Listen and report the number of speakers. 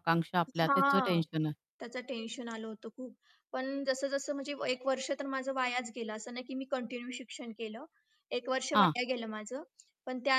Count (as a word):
two